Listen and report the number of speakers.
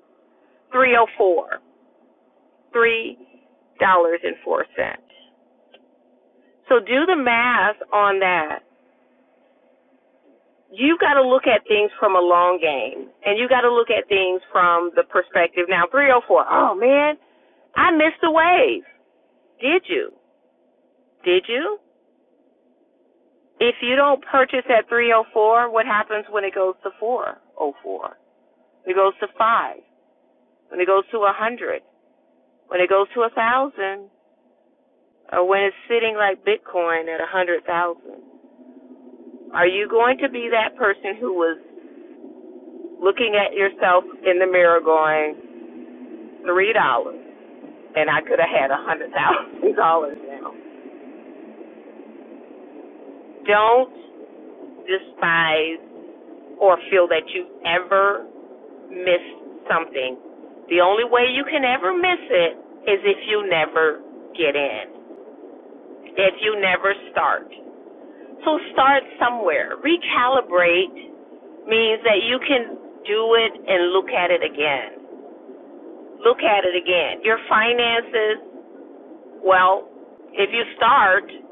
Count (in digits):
1